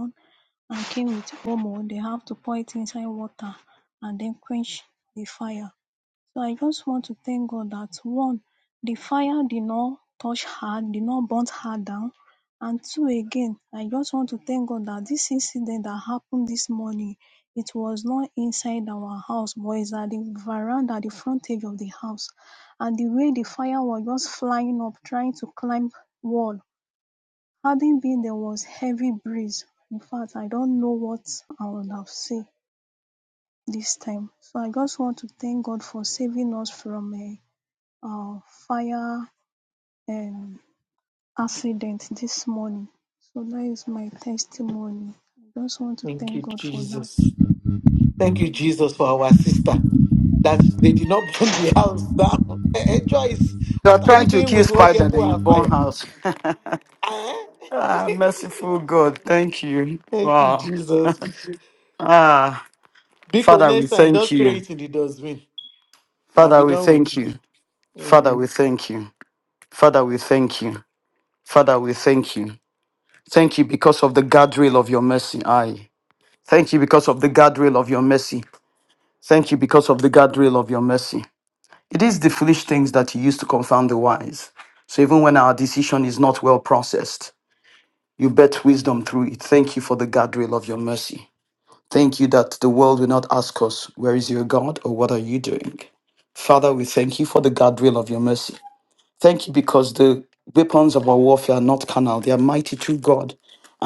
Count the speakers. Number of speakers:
3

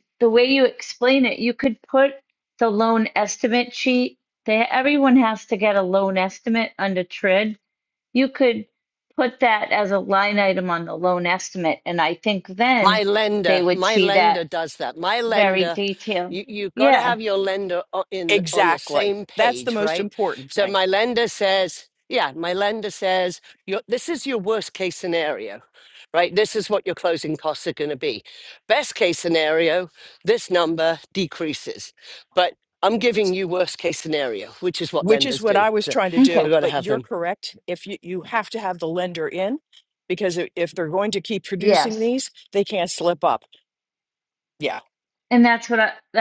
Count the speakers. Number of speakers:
3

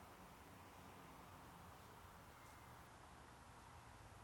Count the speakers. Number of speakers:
0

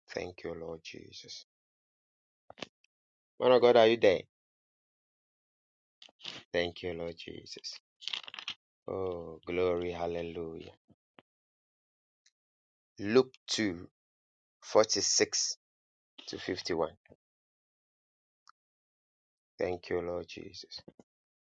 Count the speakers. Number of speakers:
1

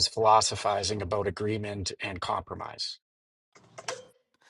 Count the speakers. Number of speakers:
1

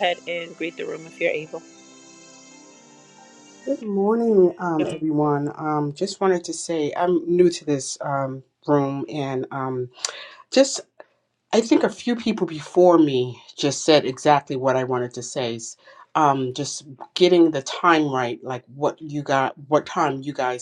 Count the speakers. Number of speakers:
2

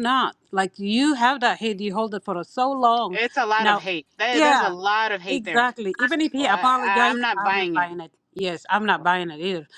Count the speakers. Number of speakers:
2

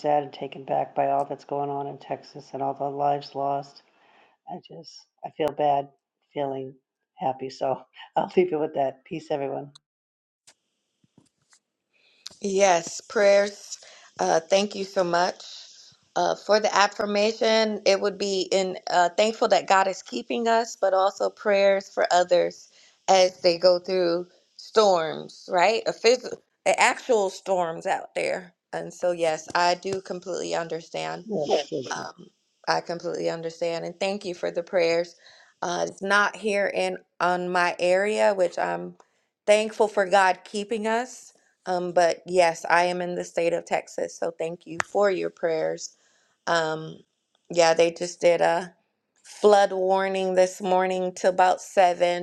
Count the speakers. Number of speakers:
2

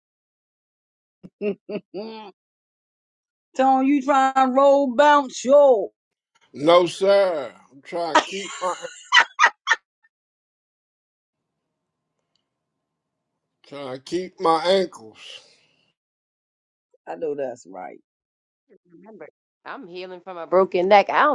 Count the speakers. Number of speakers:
3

